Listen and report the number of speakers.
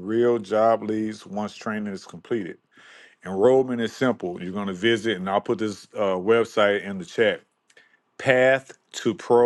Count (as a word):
one